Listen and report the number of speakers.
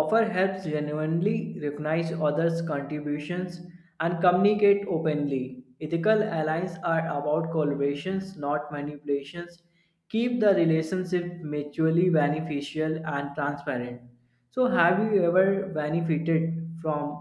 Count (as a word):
one